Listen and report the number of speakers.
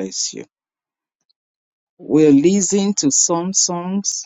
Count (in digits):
1